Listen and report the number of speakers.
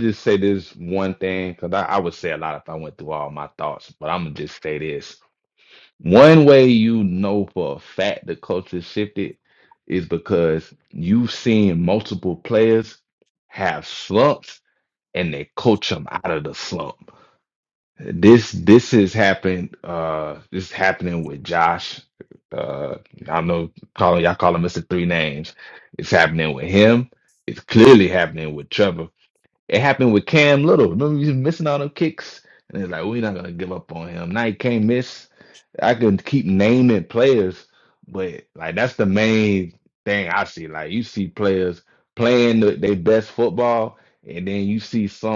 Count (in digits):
1